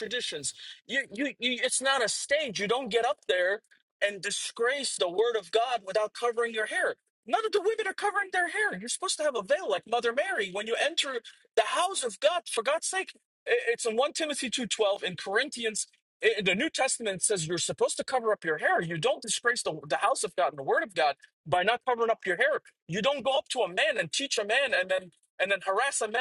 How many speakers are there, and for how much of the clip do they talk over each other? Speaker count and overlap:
one, no overlap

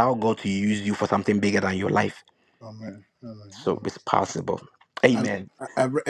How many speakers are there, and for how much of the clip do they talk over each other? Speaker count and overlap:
two, about 10%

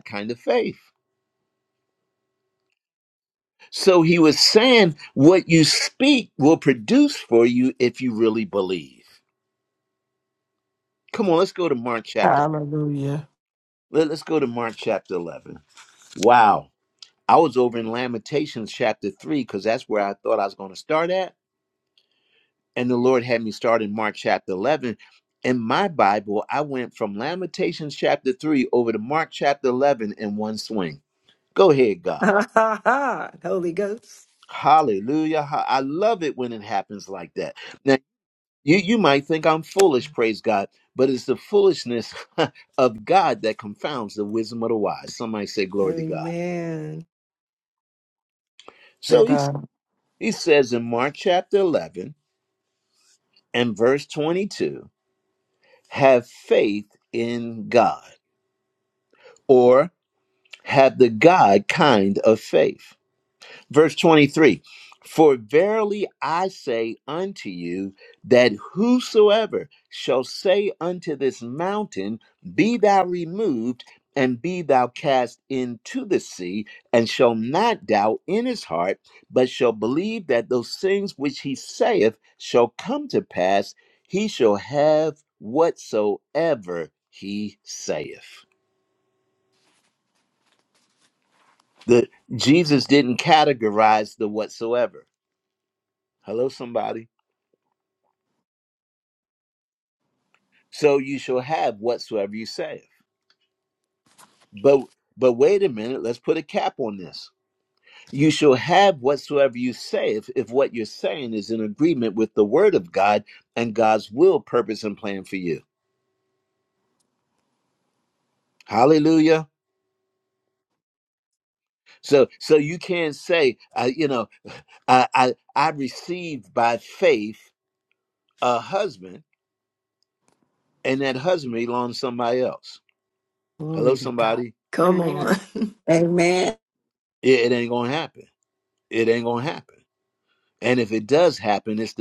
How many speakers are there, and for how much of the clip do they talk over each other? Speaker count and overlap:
four, about 2%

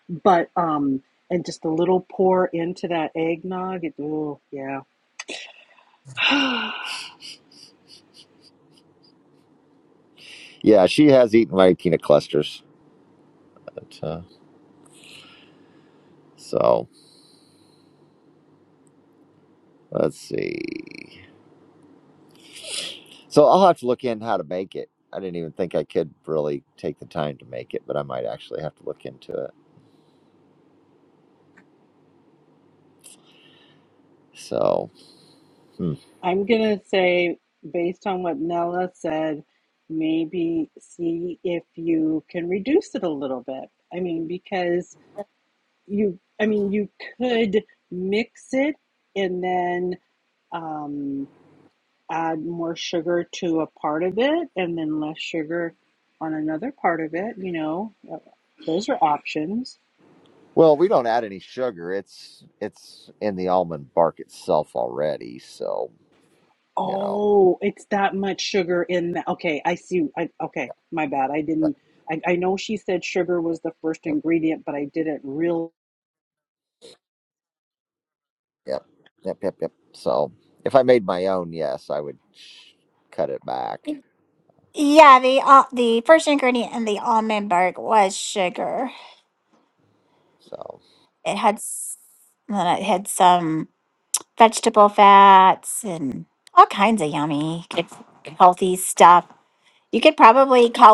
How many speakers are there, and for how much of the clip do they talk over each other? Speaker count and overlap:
three, under 1%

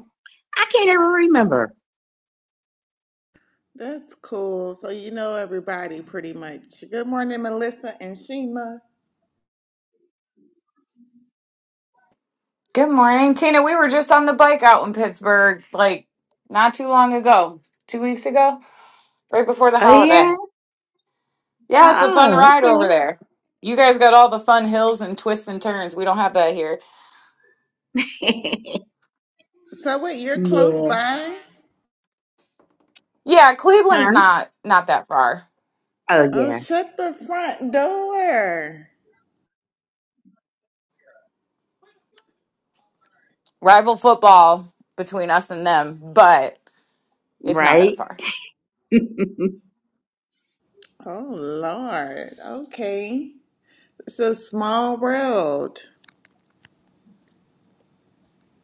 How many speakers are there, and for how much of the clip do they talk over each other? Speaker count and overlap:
three, about 5%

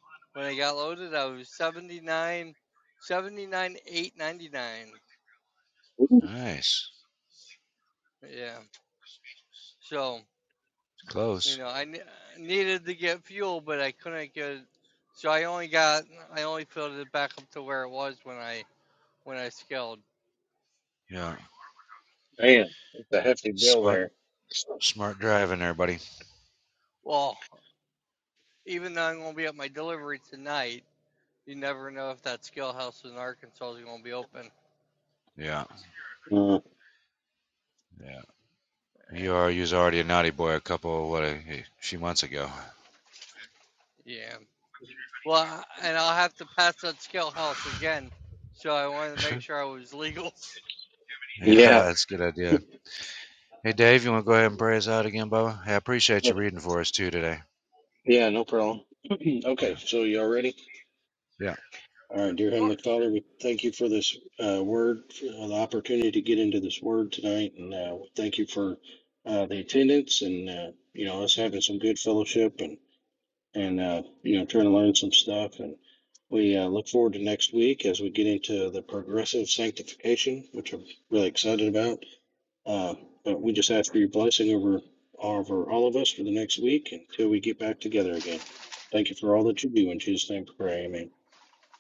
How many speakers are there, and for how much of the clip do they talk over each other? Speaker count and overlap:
three, about 2%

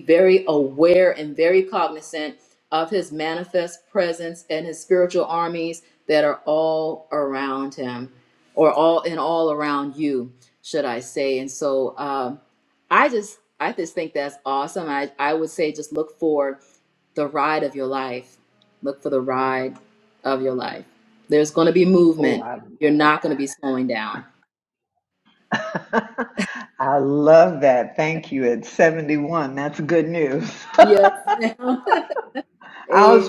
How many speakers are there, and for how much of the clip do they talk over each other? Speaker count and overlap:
two, about 2%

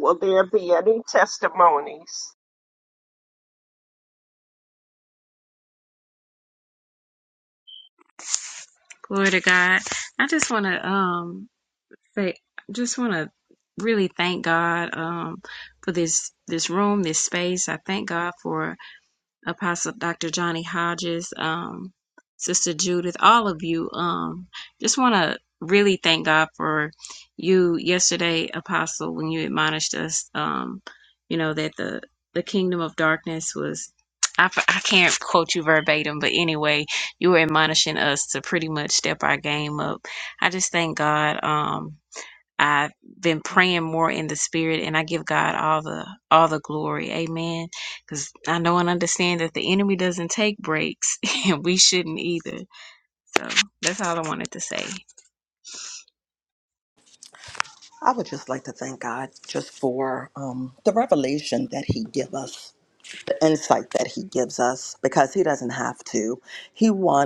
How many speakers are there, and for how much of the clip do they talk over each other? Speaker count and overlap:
three, no overlap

